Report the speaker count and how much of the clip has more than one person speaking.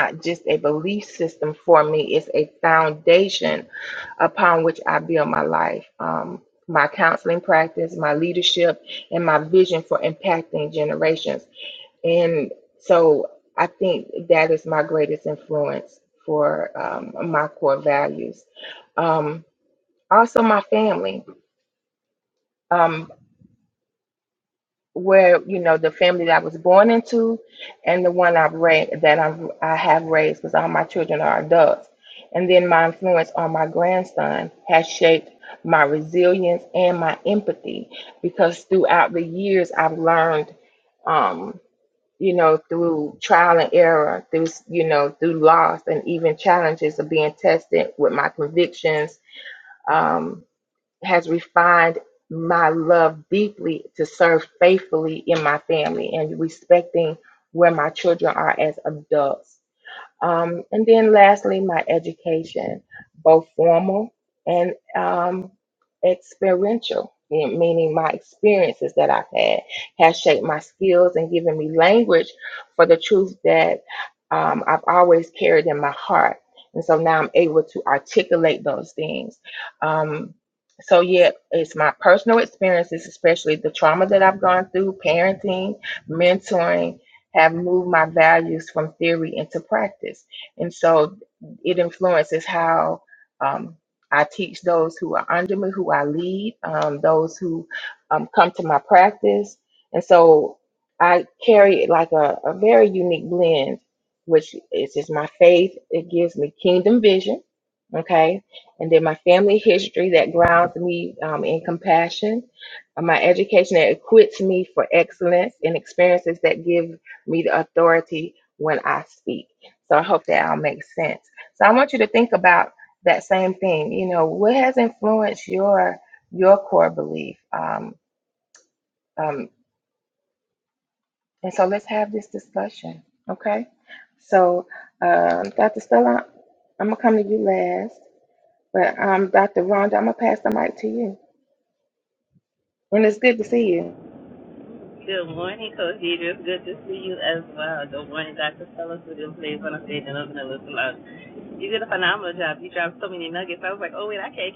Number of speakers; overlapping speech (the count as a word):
two, no overlap